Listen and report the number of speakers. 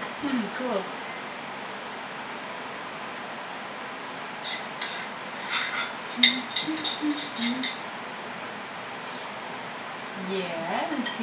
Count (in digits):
1